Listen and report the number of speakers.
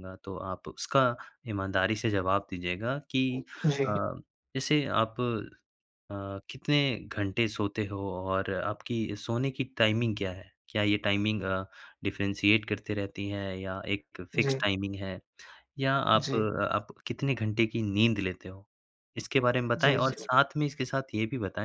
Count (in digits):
2